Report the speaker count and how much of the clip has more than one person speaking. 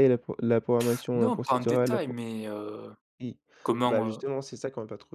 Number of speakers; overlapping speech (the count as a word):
two, about 26%